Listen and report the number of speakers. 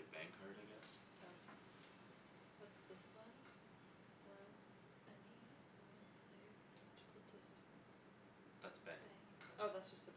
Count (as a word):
two